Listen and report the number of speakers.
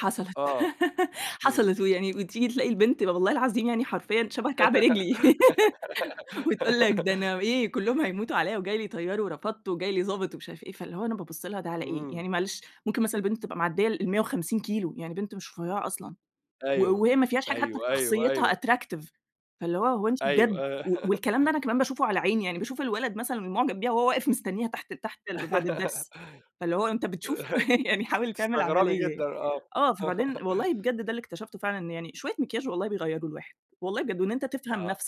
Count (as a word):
two